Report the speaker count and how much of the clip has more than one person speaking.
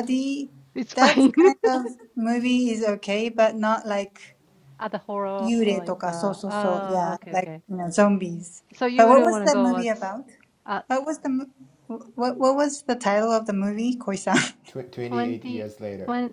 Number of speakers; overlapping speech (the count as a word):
three, about 25%